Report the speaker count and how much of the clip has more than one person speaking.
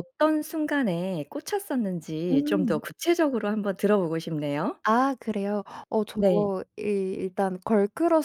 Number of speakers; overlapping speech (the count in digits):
2, about 7%